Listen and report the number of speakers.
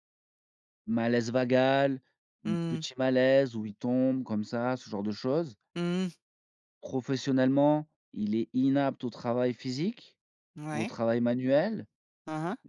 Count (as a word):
two